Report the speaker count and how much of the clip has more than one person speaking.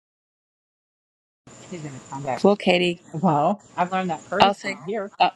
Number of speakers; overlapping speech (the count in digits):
2, about 9%